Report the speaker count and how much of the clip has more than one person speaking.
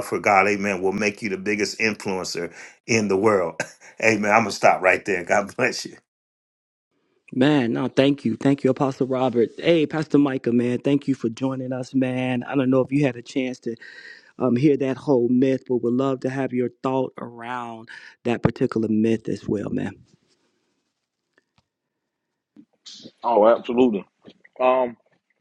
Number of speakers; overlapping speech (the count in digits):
3, no overlap